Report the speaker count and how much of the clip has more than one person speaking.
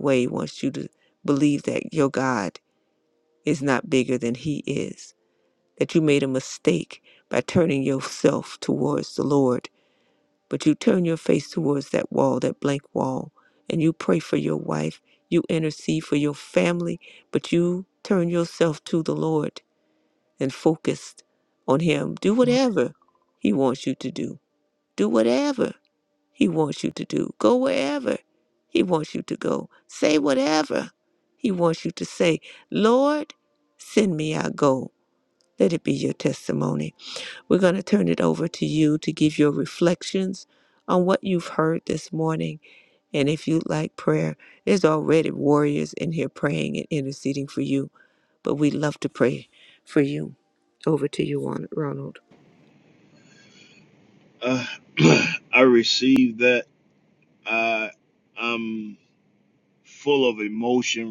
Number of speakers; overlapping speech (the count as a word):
two, no overlap